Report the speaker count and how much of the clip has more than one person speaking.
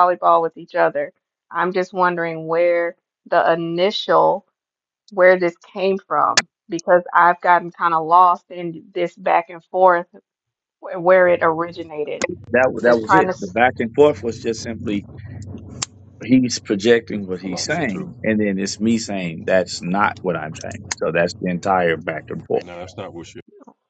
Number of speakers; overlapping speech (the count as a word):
three, about 5%